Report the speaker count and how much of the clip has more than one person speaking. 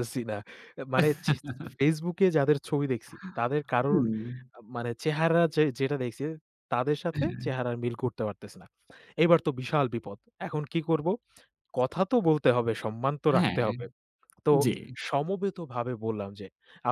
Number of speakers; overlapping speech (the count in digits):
2, about 5%